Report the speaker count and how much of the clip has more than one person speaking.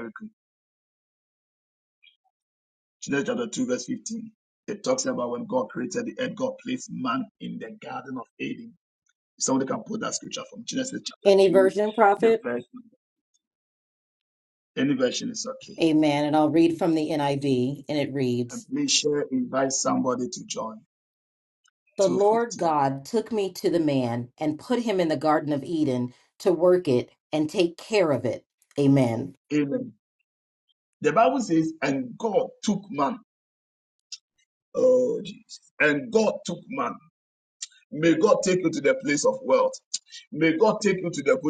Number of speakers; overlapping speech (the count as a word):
two, about 3%